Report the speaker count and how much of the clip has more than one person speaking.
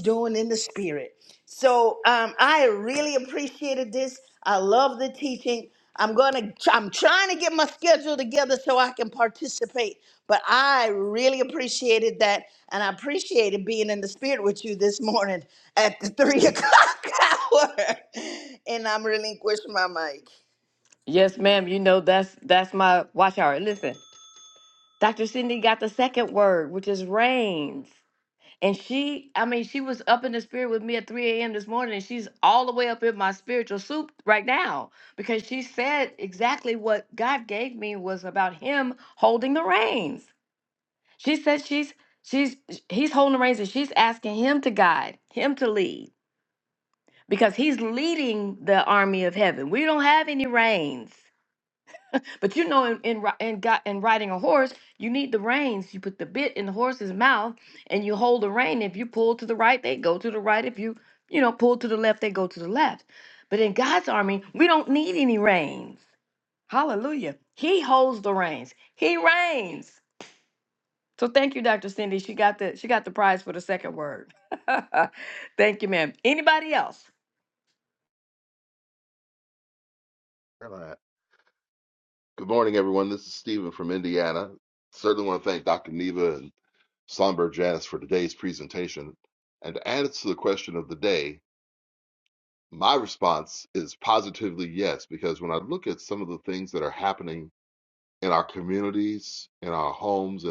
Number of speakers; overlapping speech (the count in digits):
3, no overlap